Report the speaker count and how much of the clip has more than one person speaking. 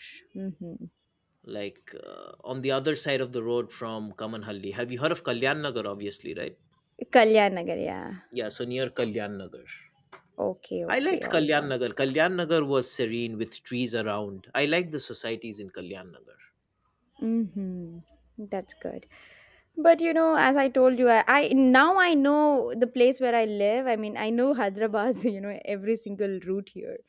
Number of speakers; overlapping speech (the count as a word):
two, about 3%